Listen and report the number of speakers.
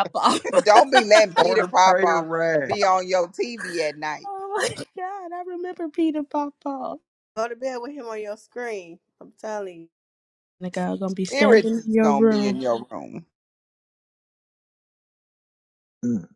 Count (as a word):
four